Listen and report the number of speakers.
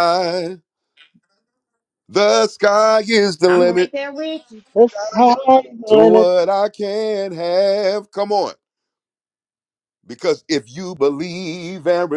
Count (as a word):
three